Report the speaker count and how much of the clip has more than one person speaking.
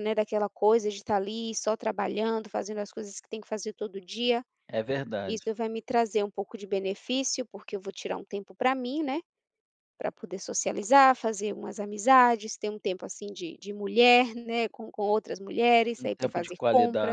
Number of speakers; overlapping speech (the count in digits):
2, about 7%